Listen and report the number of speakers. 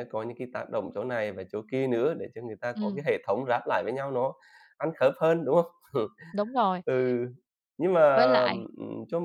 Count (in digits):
2